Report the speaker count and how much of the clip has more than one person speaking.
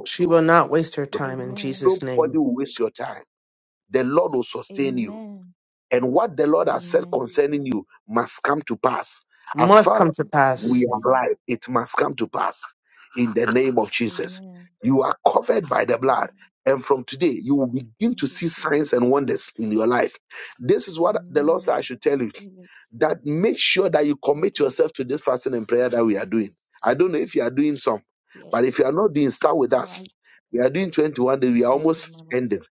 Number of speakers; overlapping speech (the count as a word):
three, about 24%